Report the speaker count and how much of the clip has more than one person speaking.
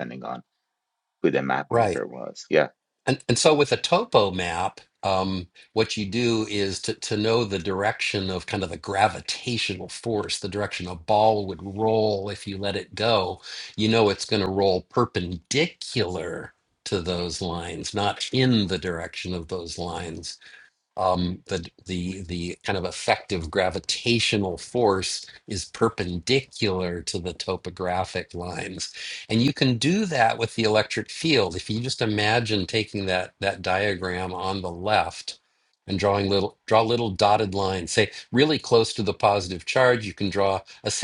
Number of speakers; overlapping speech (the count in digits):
2, about 1%